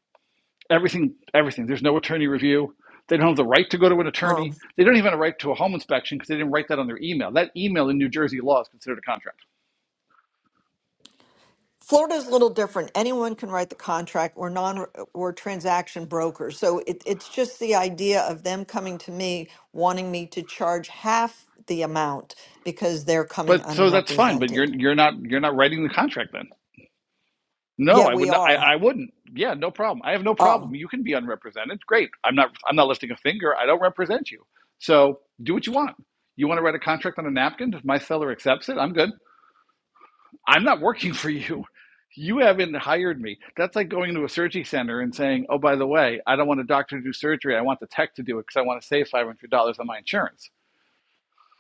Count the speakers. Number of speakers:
two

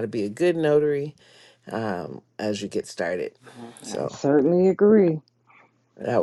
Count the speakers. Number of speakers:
two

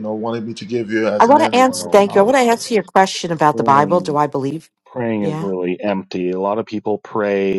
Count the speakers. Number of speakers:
three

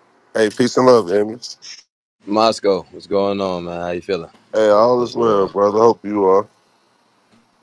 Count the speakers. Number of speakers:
two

